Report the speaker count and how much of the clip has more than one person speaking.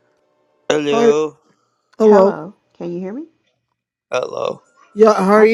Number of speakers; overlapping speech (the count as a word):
three, about 14%